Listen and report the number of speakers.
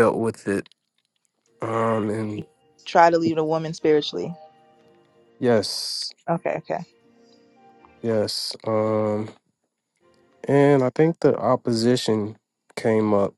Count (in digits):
2